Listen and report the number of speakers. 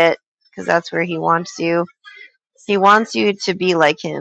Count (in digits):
1